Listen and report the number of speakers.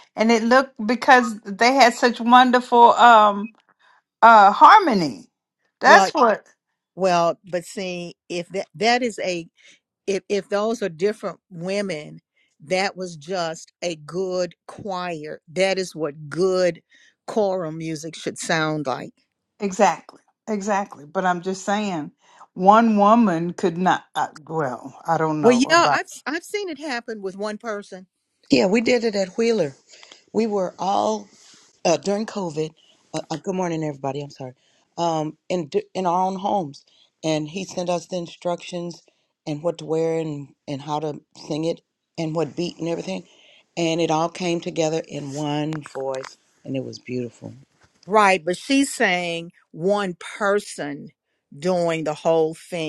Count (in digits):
3